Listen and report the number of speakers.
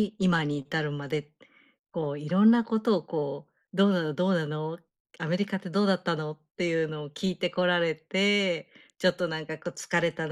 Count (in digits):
1